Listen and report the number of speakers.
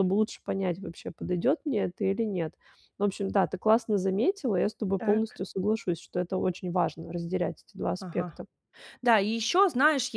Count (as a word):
two